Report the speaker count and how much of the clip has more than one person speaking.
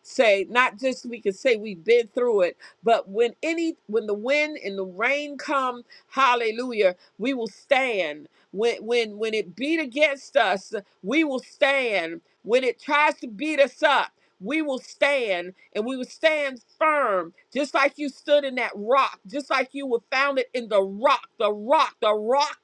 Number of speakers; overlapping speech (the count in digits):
1, no overlap